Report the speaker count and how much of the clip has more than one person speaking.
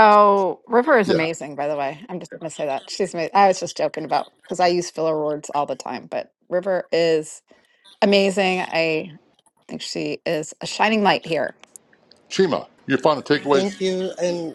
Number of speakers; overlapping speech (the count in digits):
3, about 3%